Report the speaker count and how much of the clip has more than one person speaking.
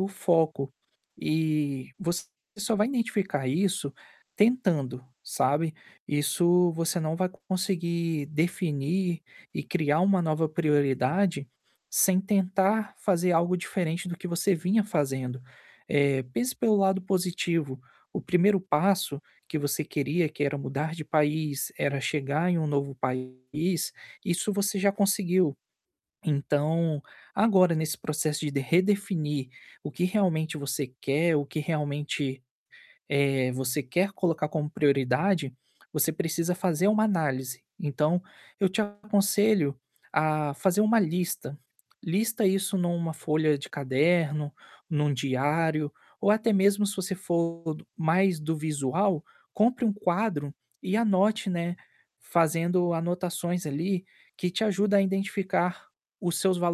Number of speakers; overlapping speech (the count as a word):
one, no overlap